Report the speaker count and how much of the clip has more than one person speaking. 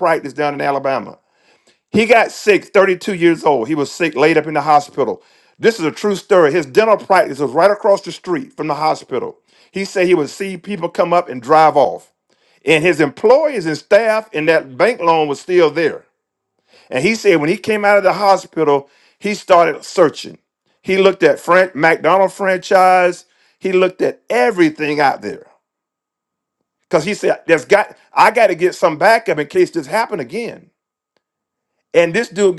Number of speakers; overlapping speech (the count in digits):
1, no overlap